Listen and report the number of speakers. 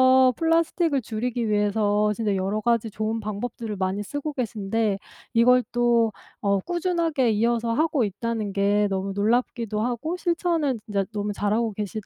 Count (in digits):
1